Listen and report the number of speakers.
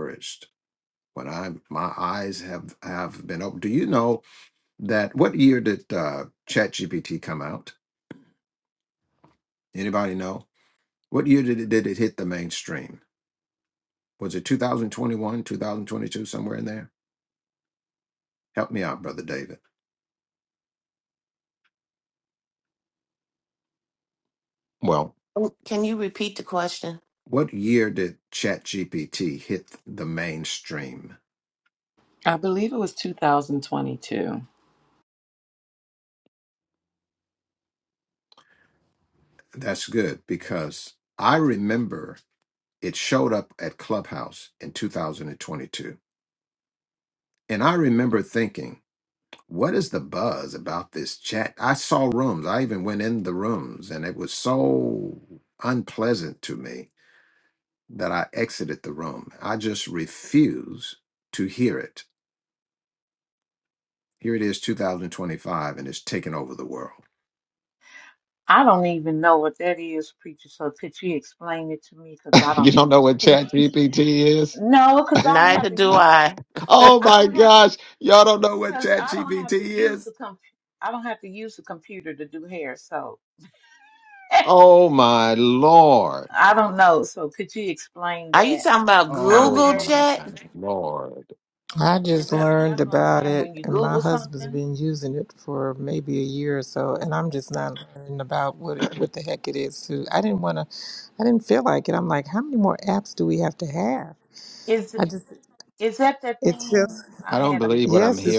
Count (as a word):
five